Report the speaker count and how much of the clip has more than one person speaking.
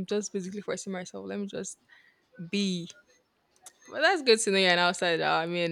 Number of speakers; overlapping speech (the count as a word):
one, no overlap